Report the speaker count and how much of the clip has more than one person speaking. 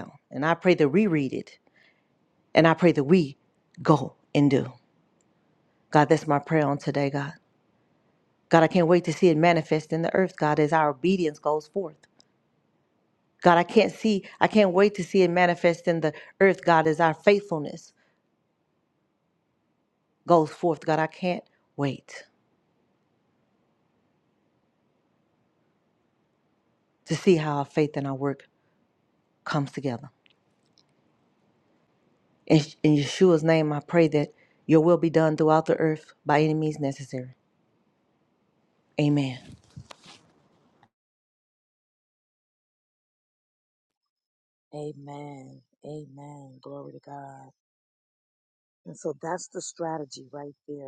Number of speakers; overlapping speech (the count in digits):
2, no overlap